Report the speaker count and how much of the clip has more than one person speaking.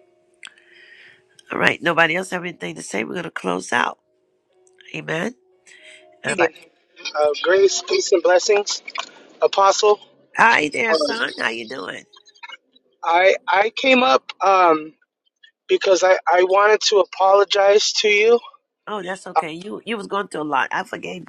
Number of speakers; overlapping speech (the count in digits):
2, about 2%